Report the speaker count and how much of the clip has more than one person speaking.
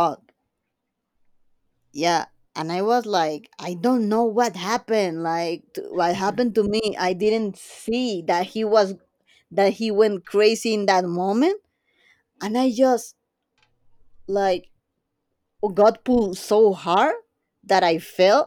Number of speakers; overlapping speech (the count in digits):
1, no overlap